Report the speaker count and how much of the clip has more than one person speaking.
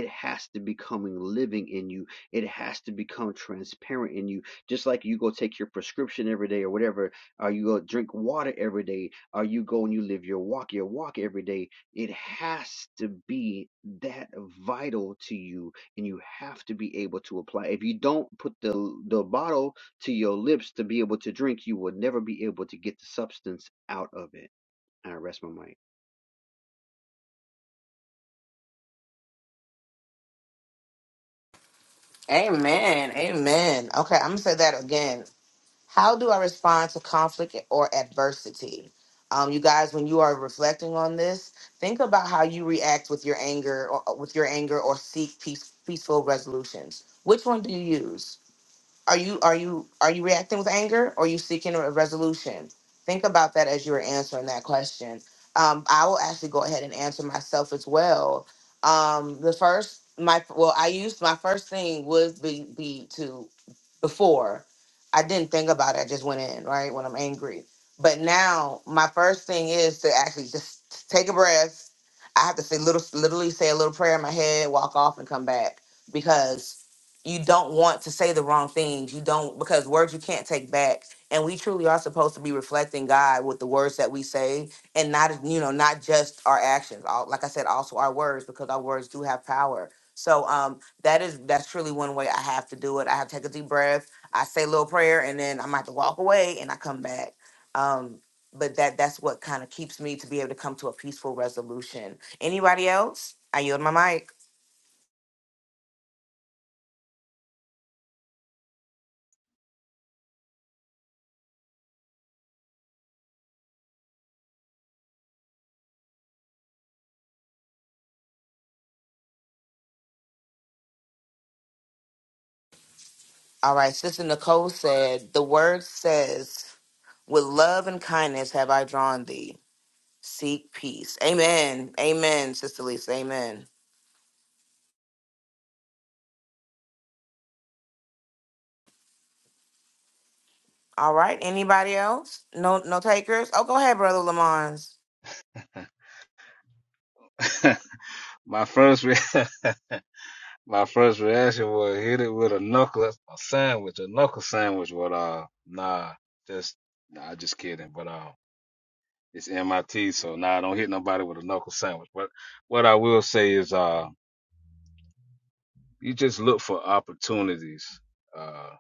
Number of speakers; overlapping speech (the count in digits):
3, no overlap